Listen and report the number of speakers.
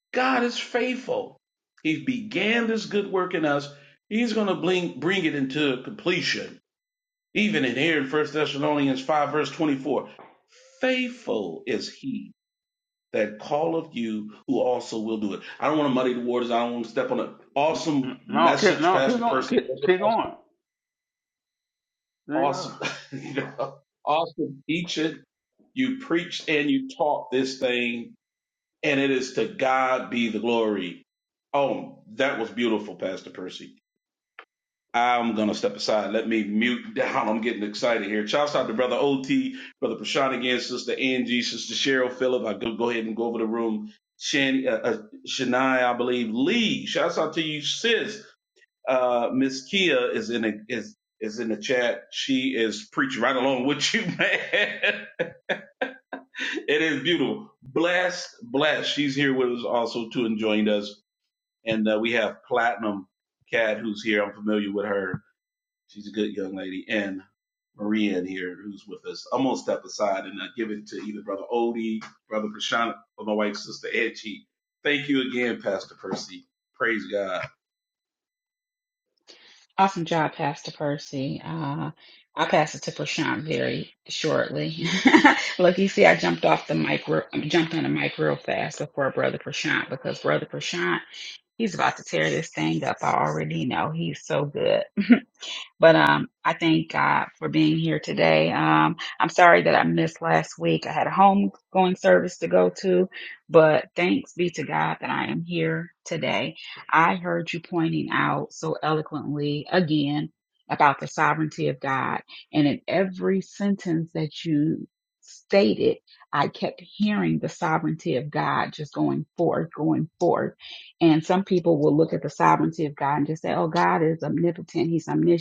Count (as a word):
three